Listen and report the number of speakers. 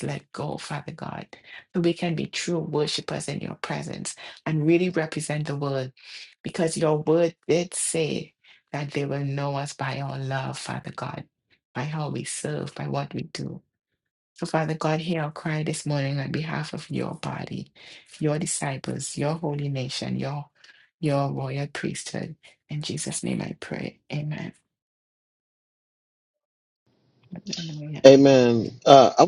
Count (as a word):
two